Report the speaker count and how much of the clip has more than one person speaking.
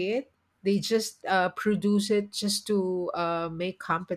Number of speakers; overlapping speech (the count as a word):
one, no overlap